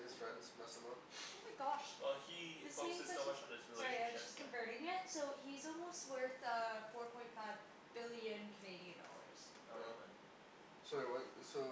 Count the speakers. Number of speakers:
3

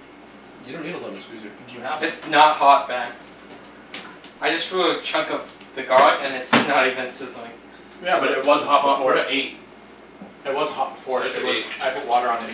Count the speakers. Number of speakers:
3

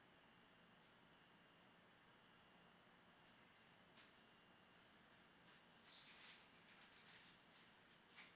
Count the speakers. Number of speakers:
0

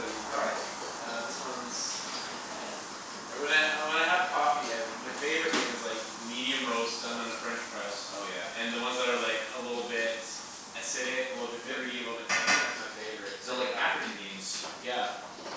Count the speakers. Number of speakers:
2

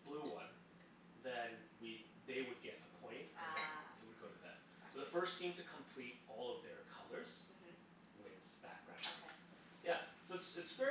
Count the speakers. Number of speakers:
2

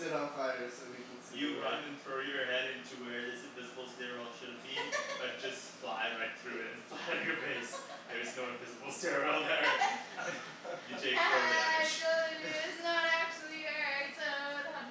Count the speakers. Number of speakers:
3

